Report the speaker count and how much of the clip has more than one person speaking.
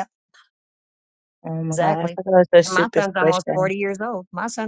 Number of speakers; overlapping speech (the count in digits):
2, about 31%